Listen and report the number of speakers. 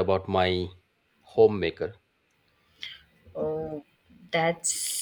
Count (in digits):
2